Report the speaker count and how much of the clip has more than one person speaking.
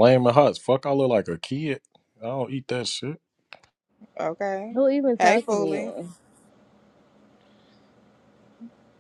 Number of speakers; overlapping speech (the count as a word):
three, about 8%